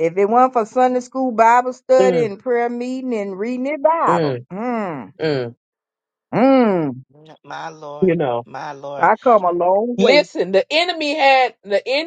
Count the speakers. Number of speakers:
three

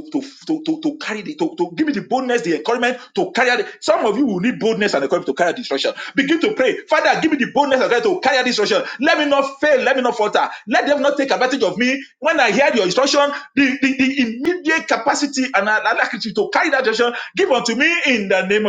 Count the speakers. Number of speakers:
one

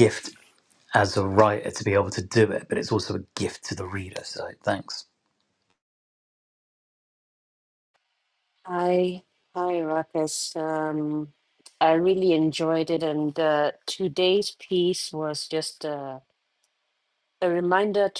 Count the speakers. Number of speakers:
two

